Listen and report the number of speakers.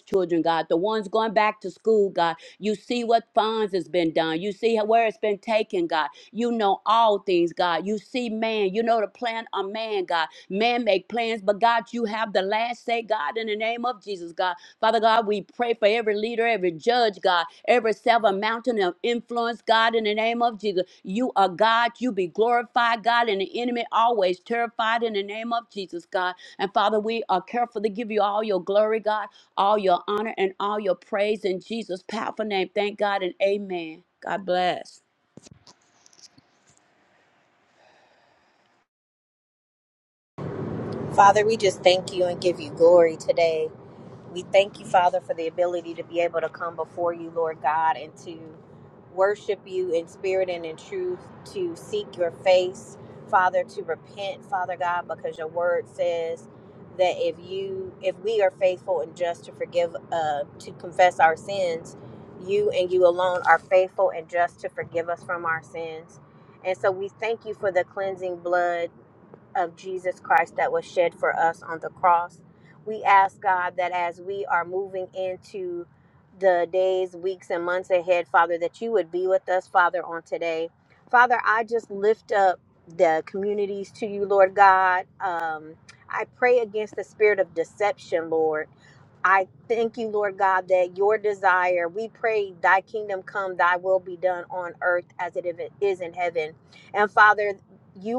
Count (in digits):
2